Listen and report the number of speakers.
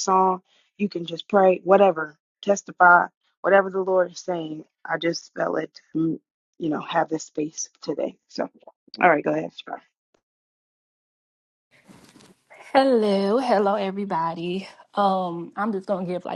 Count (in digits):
2